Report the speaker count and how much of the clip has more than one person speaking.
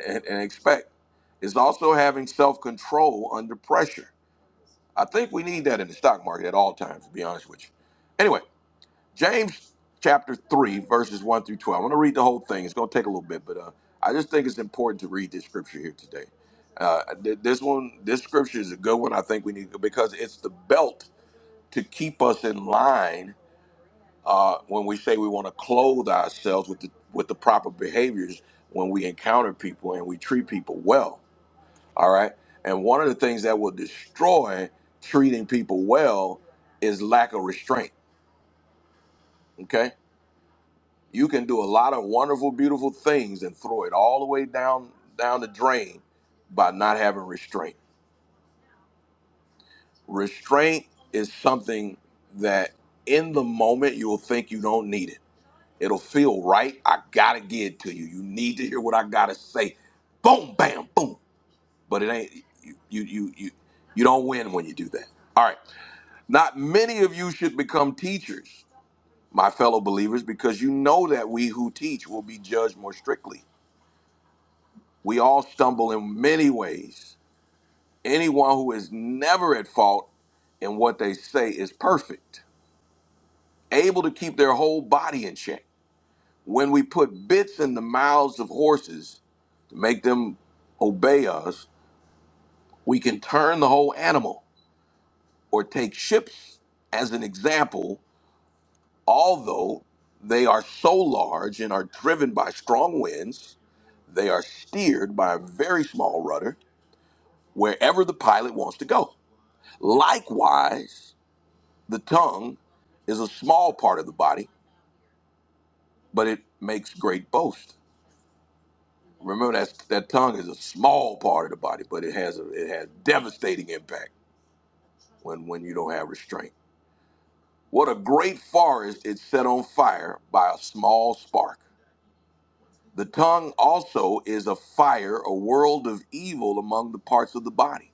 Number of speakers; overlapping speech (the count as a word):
one, no overlap